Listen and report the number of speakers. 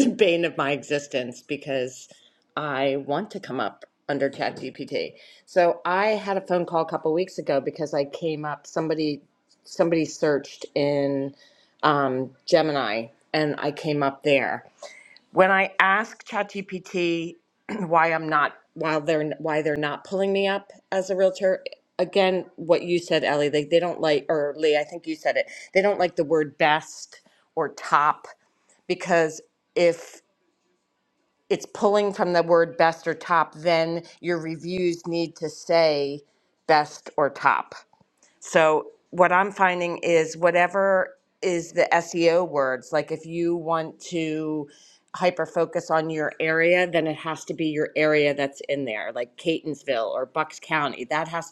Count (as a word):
one